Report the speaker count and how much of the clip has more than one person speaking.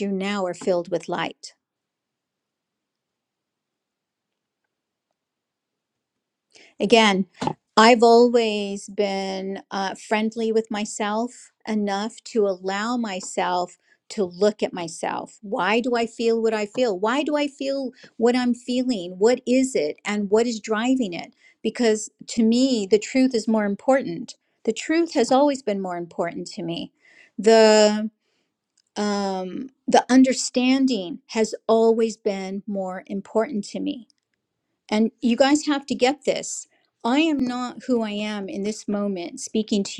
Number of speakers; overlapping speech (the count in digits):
1, no overlap